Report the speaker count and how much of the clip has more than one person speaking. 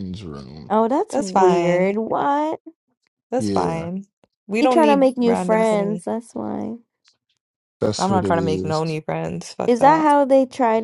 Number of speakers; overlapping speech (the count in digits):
3, about 34%